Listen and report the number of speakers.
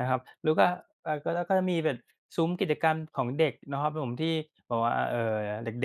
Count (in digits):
1